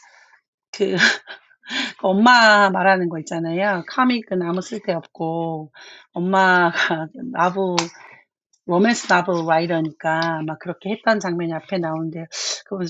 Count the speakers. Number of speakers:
1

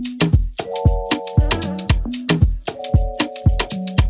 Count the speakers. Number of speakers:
0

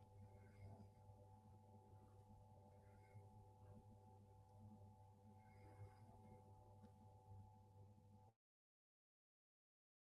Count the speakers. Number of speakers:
0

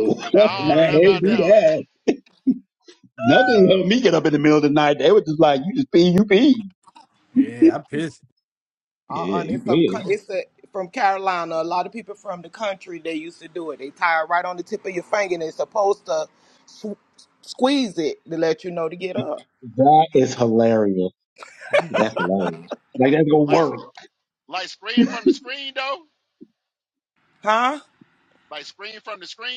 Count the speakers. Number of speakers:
4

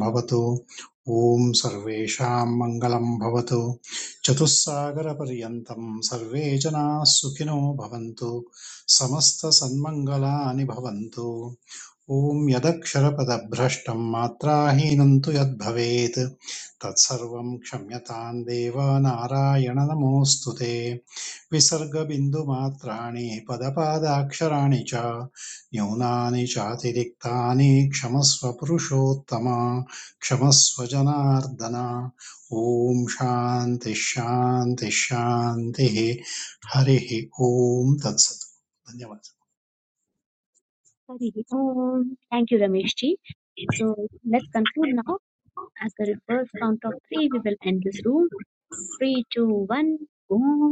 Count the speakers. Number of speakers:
2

